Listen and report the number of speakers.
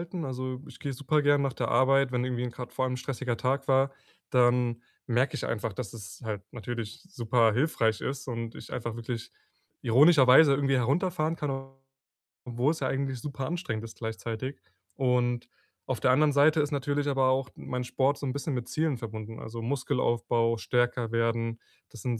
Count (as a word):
one